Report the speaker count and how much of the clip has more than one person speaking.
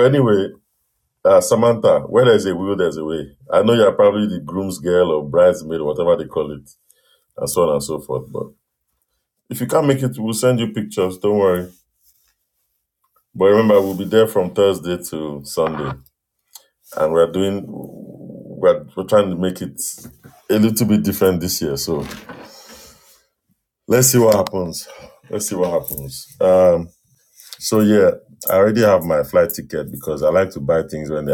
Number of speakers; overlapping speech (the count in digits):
1, no overlap